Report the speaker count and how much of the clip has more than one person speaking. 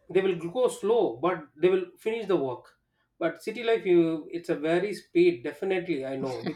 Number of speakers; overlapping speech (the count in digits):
1, no overlap